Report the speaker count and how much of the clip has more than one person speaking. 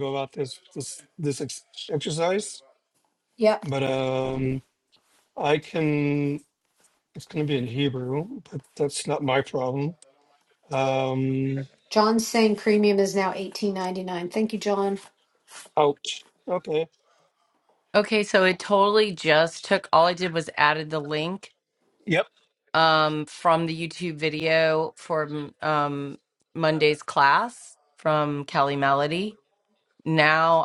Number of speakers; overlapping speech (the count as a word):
three, under 1%